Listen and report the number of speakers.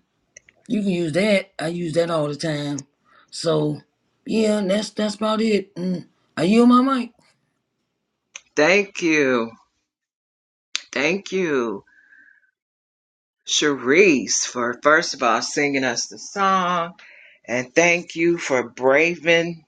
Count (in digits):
2